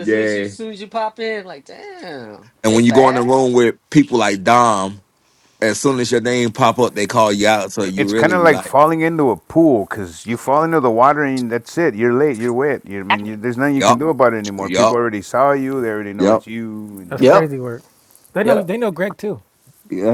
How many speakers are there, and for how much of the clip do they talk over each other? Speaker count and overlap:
4, about 17%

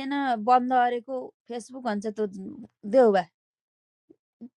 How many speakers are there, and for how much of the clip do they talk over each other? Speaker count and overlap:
1, no overlap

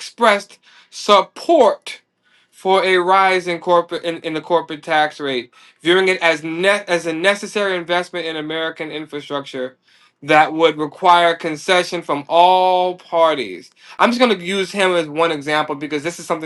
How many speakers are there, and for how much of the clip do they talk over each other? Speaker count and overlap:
1, no overlap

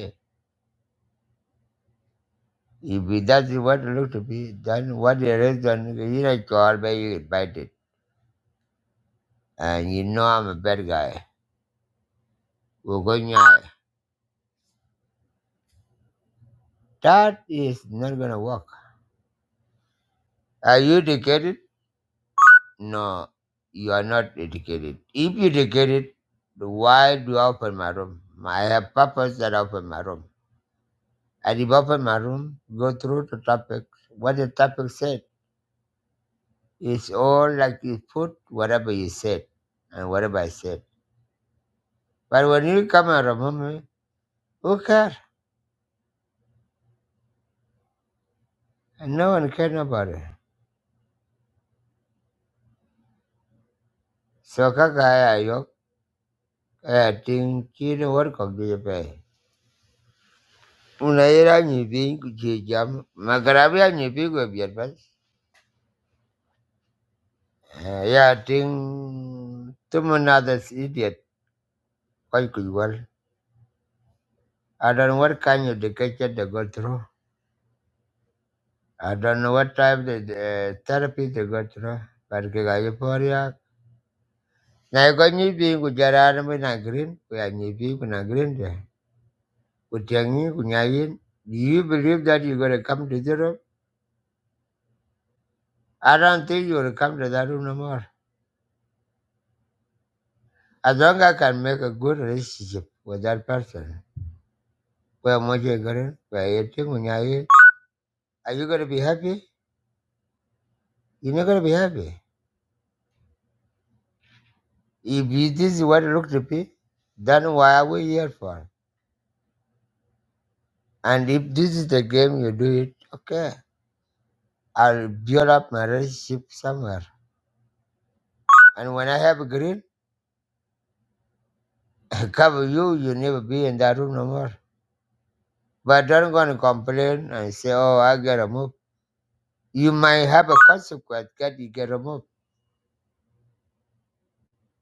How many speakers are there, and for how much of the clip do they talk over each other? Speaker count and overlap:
1, no overlap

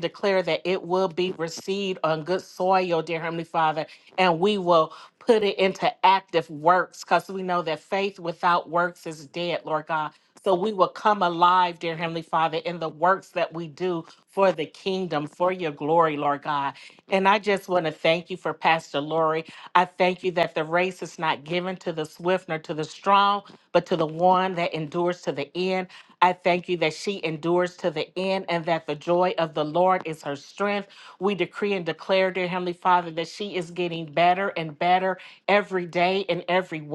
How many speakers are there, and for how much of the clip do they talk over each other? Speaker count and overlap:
1, no overlap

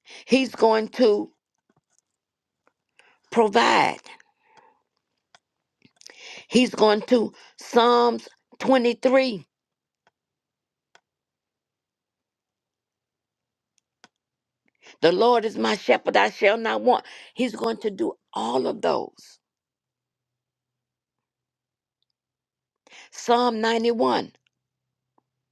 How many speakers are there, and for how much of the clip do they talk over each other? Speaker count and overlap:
1, no overlap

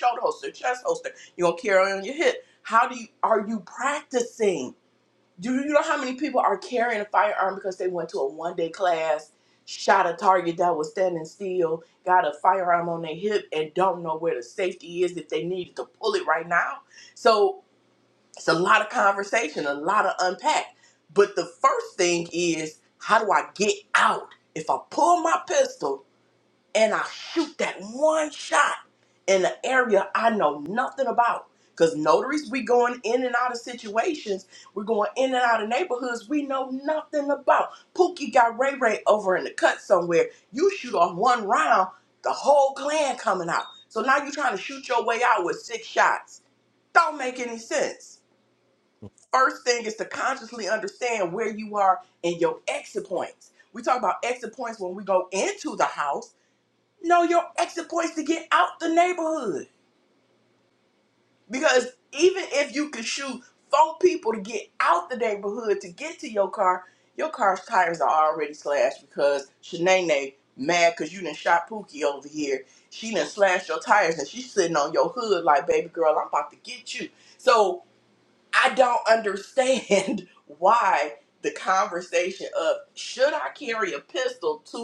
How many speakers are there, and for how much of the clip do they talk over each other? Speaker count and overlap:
1, no overlap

